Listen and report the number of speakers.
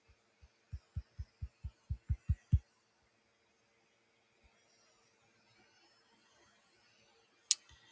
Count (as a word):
zero